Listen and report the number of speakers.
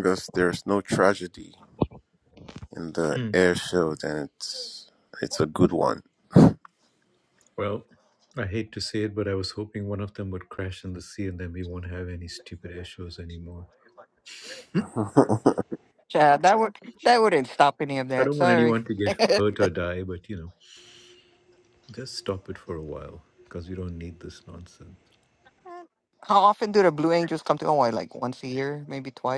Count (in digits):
3